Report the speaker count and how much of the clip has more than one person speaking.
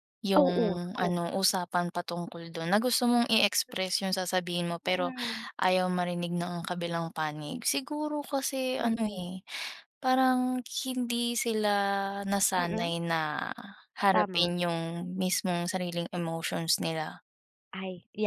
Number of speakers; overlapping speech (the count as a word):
two, about 10%